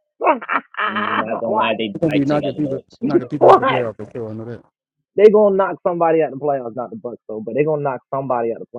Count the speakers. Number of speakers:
3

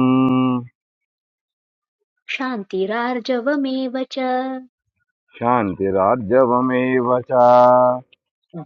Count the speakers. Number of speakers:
2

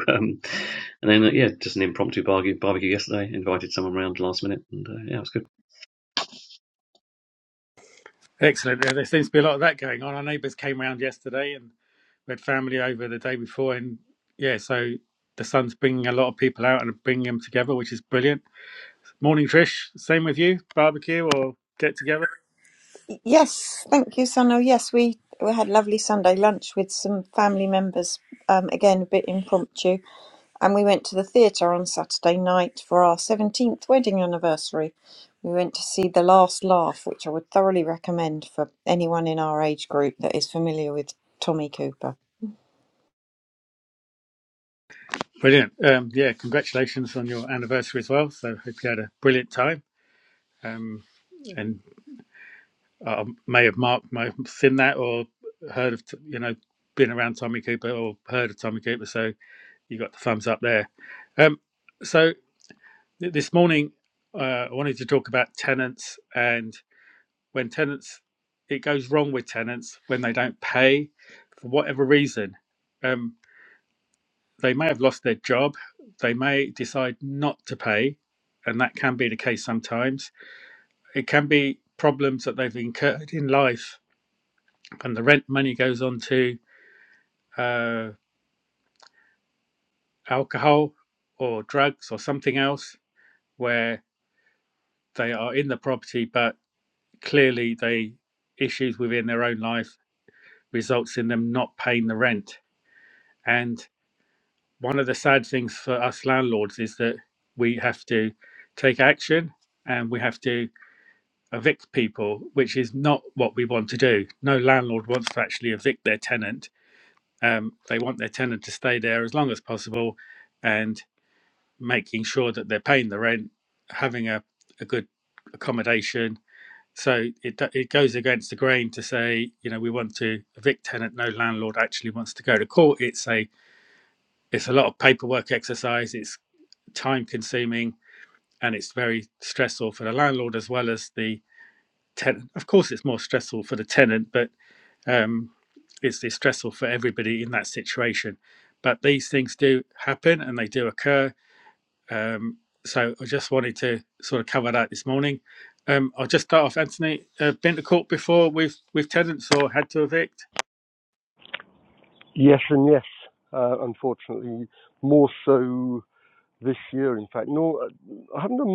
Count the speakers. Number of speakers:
4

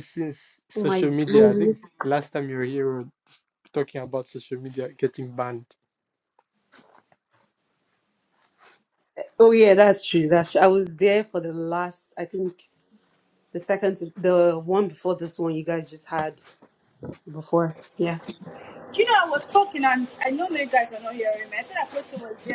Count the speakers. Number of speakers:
3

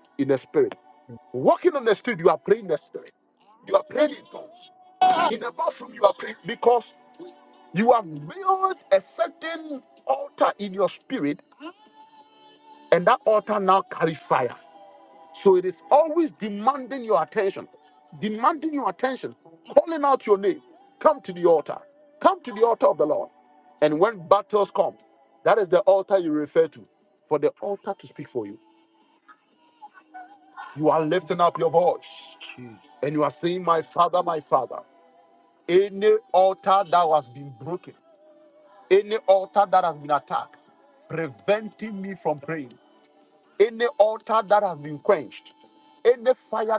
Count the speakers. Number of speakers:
1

